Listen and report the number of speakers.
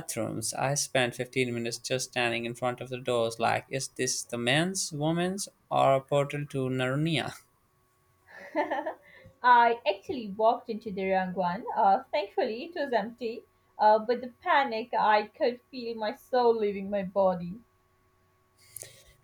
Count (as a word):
two